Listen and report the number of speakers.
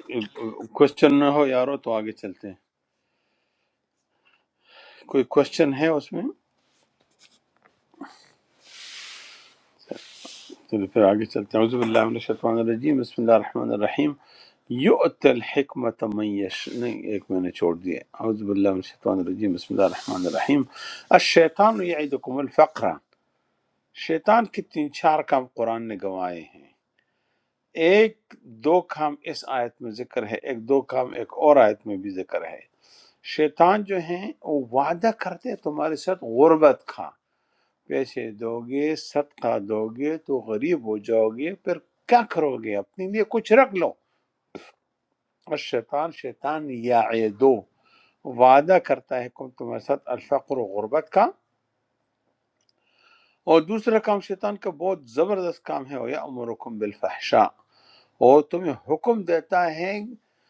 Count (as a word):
one